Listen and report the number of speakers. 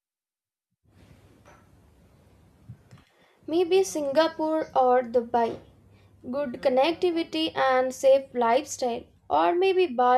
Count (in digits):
1